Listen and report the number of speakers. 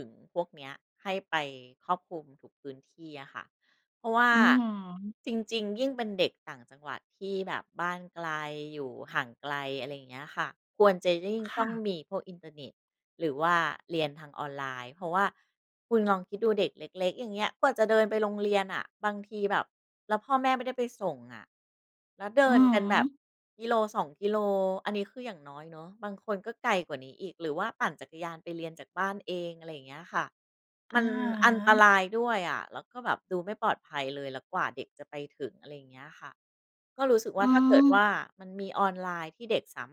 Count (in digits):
2